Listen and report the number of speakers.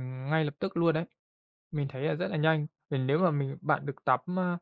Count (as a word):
one